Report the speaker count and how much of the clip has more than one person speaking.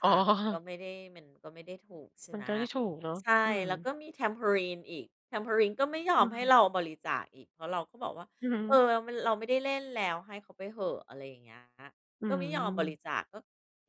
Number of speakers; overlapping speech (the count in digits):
2, about 14%